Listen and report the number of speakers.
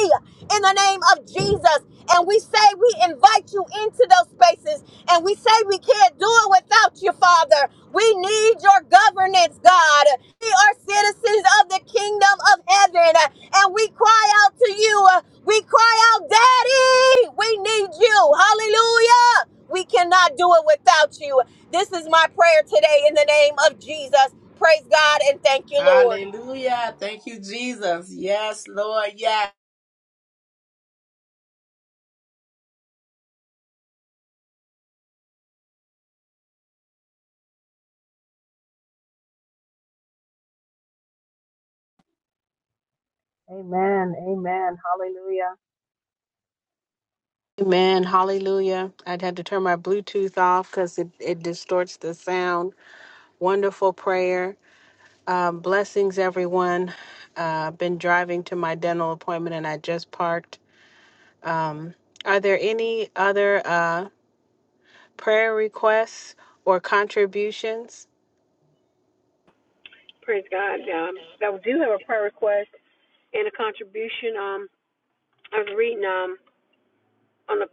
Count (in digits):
4